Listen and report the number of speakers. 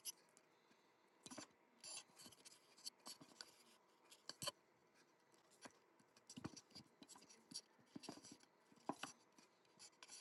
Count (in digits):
0